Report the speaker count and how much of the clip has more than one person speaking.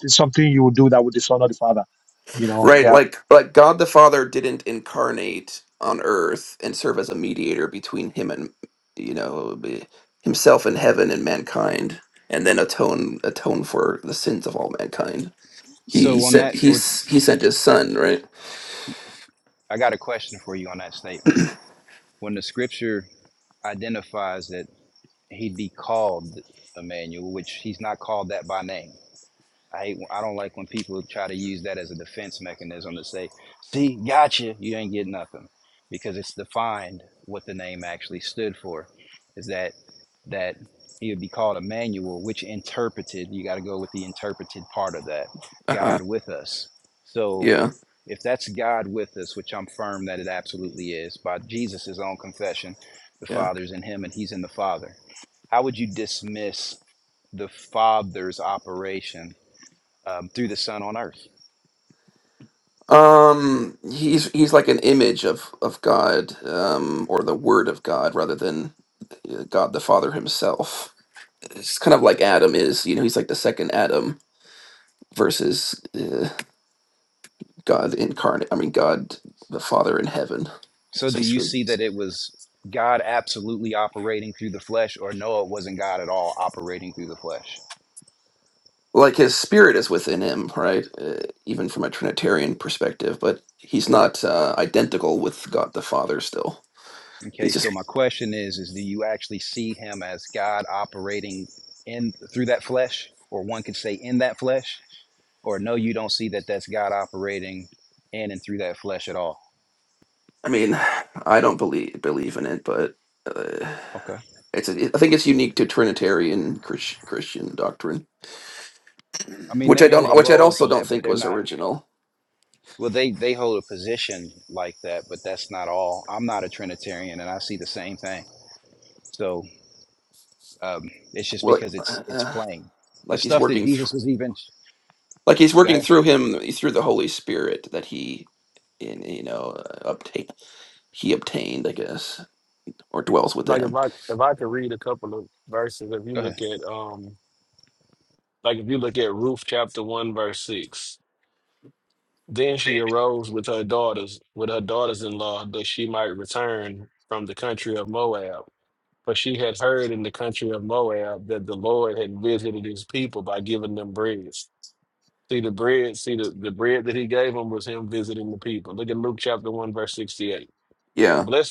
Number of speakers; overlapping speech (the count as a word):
four, about 4%